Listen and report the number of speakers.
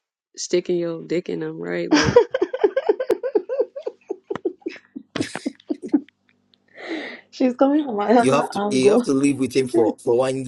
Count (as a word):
three